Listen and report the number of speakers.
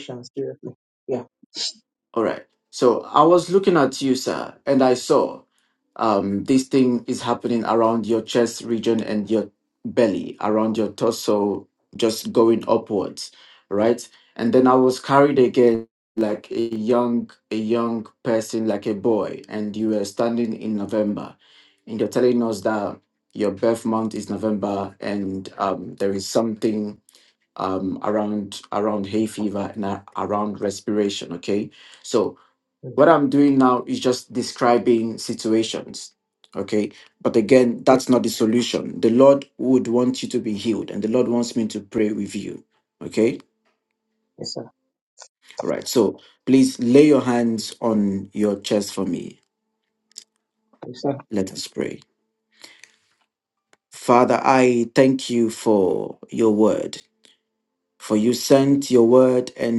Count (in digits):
2